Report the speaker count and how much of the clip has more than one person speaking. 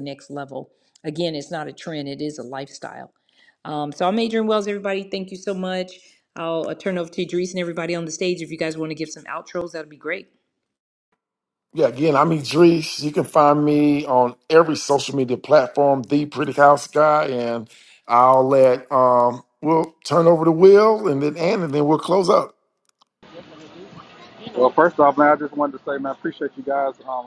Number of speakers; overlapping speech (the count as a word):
three, no overlap